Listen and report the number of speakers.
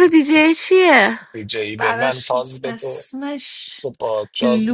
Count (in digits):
3